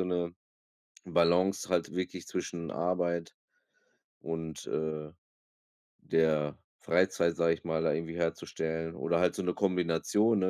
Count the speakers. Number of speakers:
1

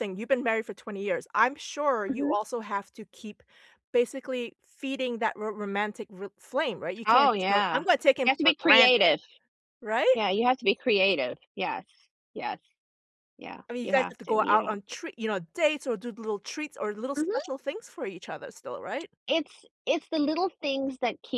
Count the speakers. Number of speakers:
2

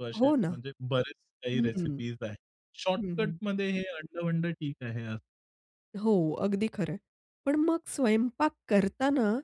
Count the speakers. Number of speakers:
2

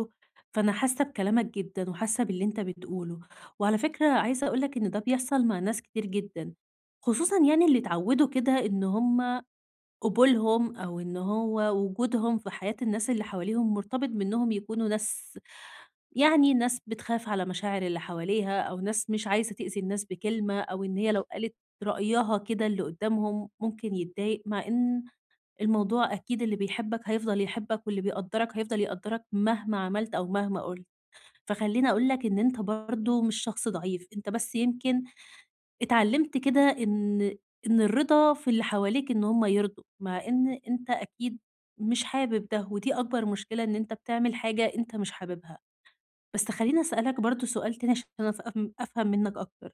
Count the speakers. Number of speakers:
1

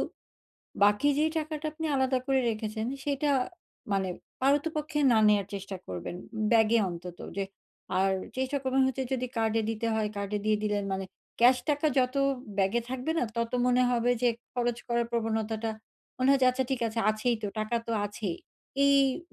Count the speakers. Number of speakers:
1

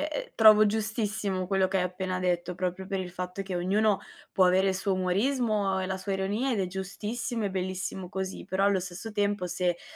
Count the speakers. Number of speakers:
1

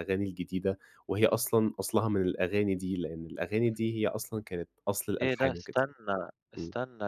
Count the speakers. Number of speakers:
2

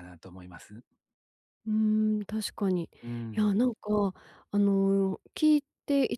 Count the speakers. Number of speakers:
2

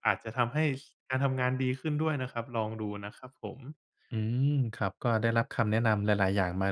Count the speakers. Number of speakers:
2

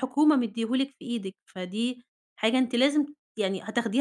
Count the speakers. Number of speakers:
1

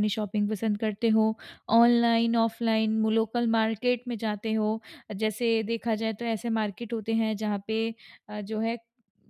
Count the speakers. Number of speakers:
1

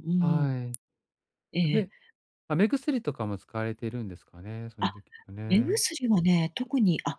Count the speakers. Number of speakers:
2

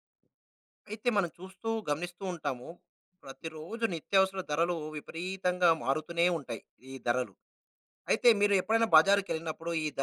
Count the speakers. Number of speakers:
1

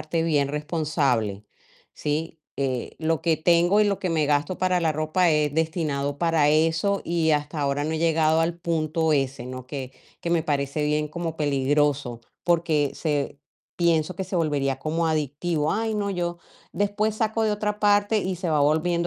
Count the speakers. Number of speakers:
1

